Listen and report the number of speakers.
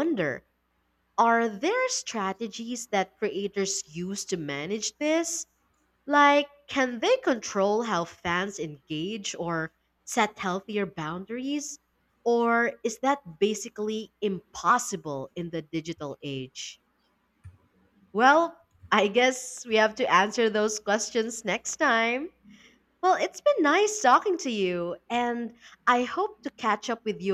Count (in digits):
1